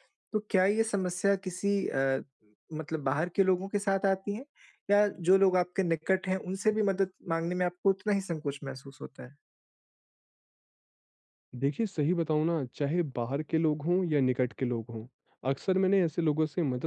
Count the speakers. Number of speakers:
two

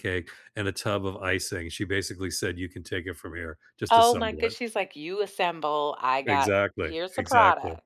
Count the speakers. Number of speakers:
two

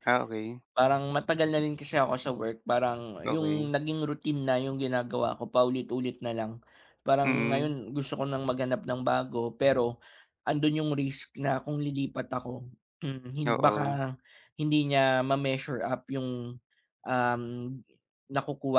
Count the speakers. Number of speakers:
two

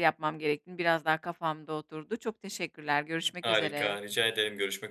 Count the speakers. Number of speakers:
two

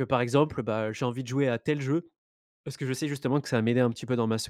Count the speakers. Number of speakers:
one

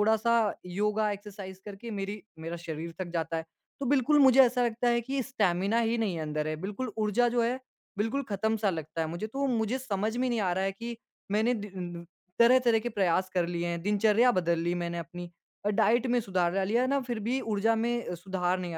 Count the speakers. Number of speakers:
one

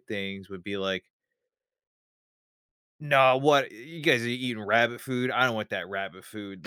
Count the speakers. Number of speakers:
one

